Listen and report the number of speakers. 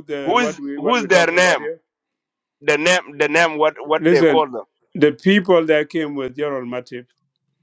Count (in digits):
2